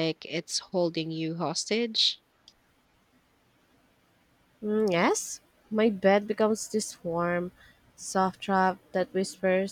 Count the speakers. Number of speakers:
two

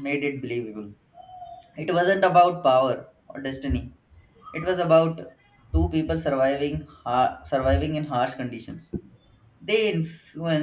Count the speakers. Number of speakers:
one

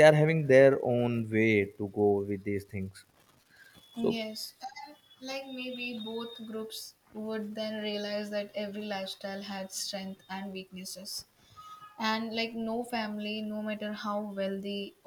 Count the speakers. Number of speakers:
two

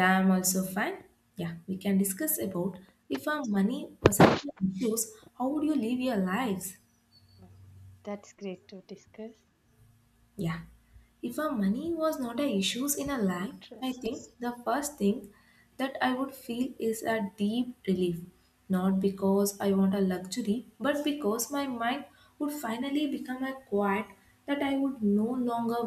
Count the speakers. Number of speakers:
two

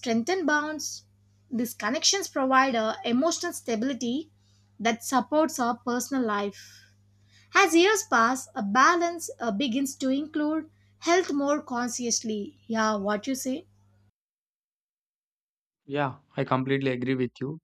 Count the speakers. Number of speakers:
two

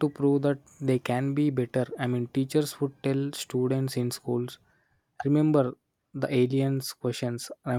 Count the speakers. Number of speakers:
one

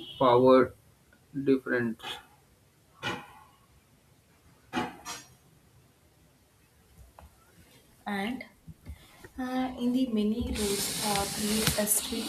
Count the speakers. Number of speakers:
two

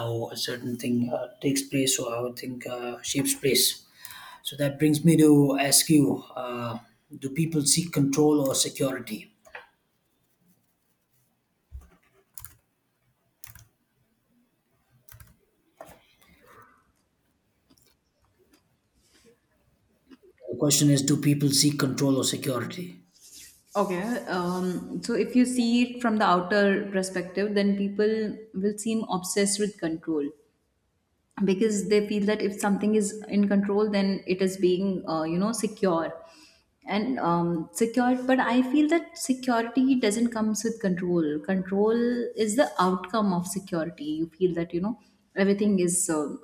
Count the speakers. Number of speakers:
two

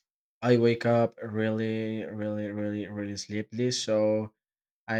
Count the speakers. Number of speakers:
one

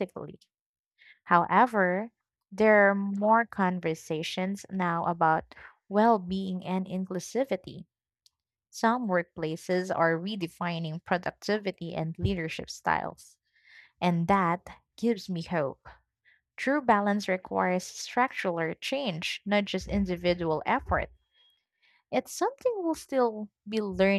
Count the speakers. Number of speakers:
one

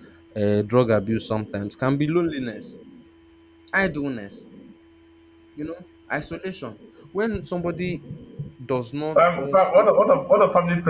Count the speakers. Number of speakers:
two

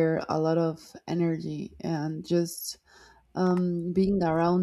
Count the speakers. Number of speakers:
one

